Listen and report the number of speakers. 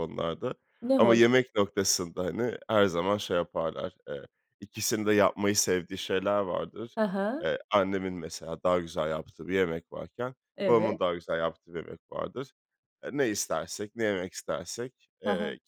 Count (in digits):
2